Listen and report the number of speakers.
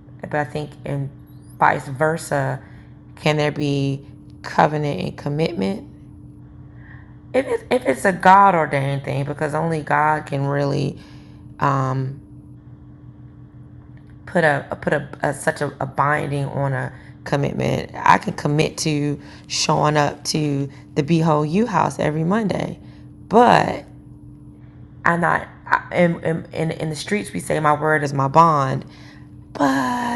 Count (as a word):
one